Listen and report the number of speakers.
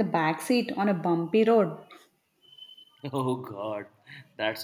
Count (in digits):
2